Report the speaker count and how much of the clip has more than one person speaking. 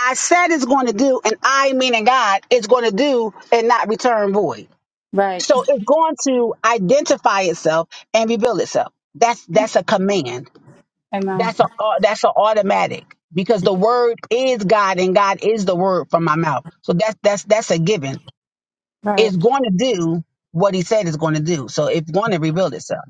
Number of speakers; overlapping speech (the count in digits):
2, about 2%